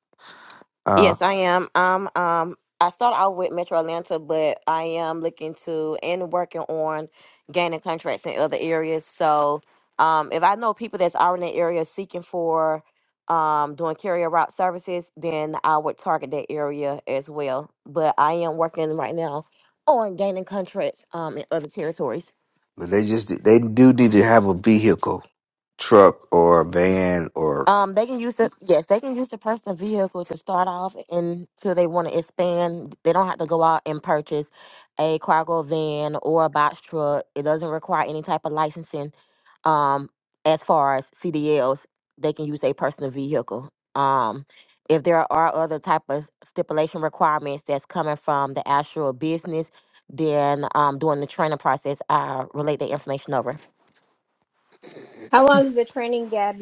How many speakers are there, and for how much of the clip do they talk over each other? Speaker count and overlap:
three, under 1%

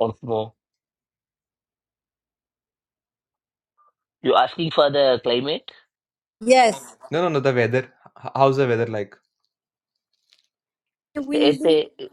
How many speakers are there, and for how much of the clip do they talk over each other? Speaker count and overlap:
three, about 4%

